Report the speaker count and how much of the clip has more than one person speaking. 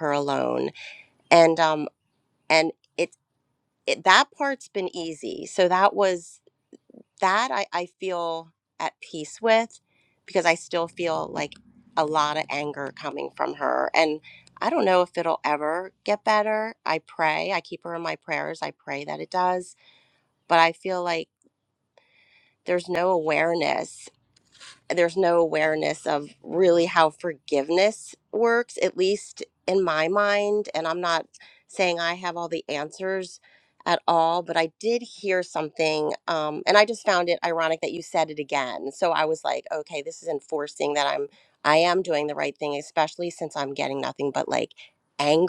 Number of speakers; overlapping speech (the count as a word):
one, no overlap